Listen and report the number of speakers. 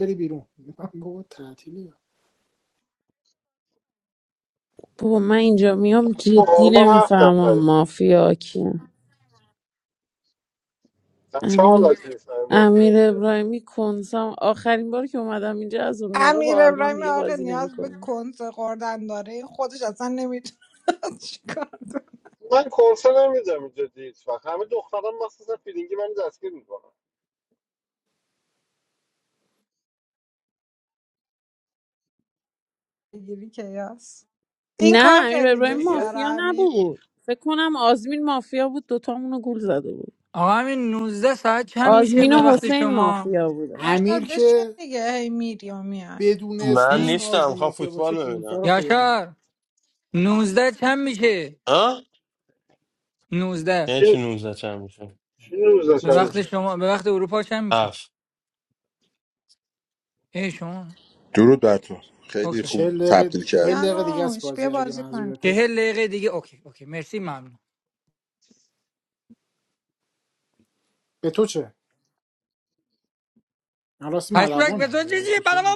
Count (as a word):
seven